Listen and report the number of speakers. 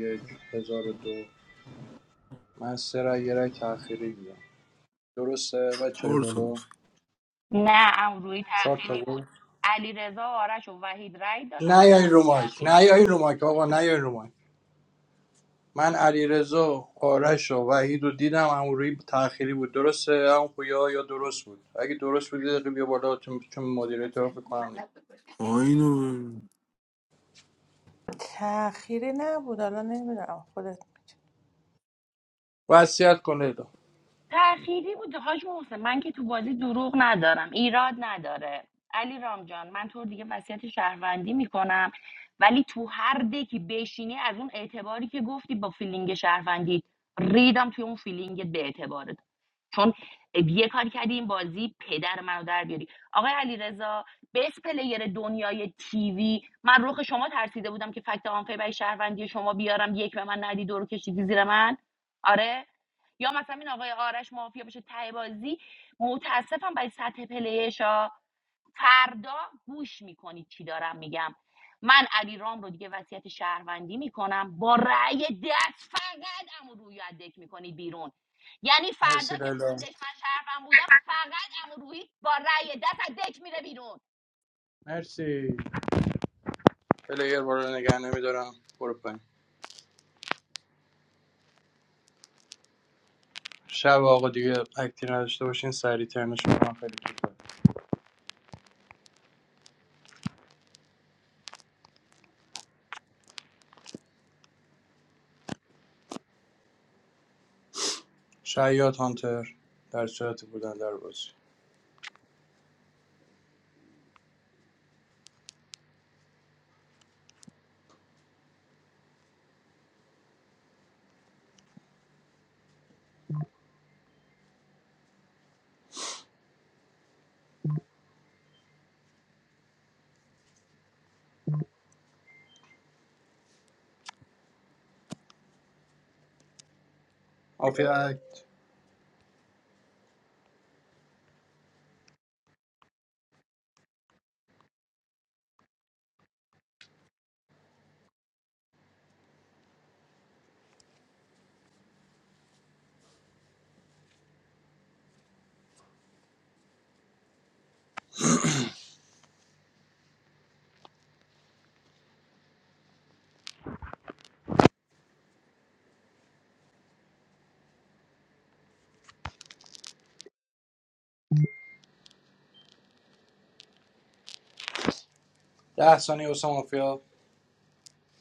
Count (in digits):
4